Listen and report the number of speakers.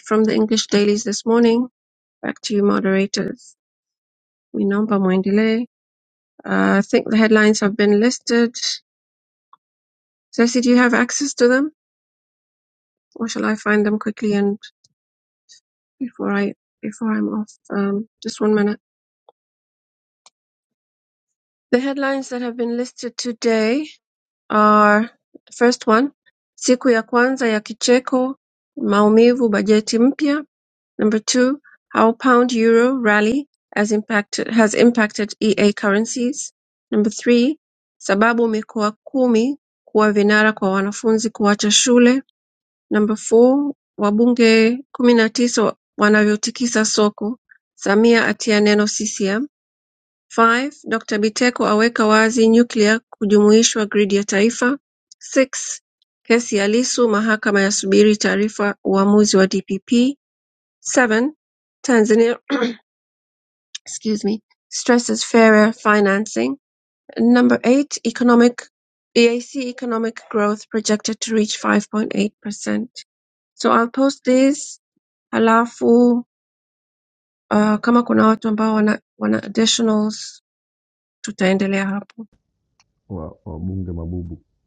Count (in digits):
2